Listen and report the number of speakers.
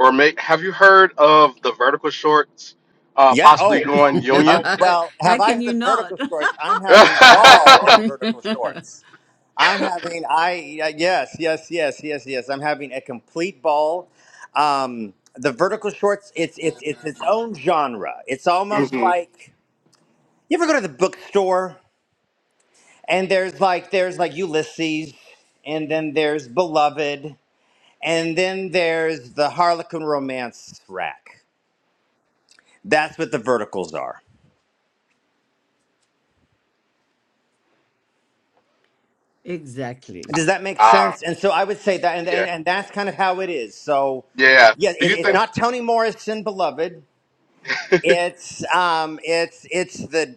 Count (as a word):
three